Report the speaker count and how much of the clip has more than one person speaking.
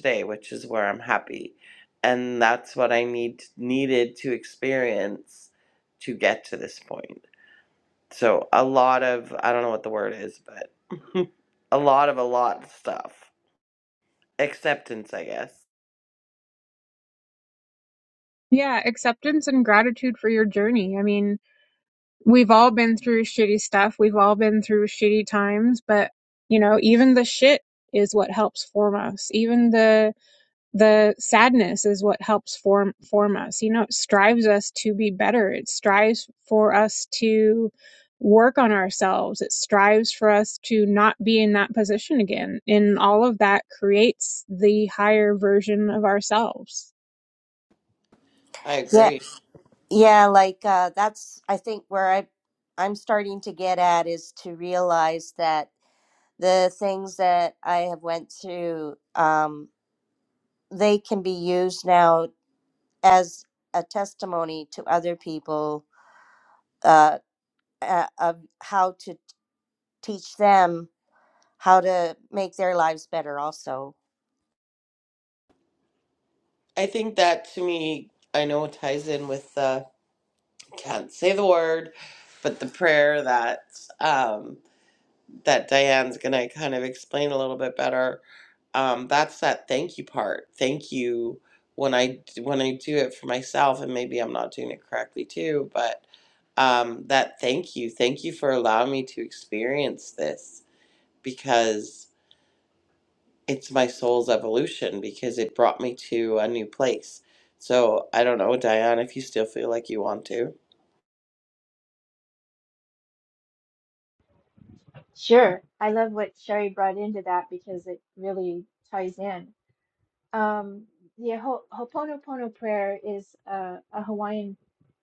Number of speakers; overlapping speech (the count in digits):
4, under 1%